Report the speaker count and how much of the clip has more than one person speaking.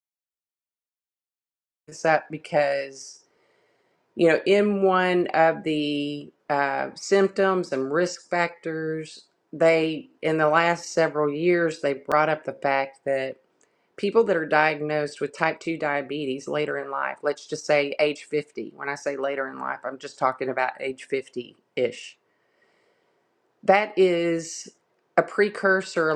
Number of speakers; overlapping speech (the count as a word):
one, no overlap